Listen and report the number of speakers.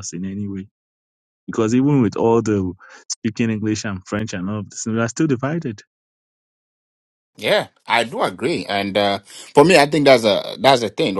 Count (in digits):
2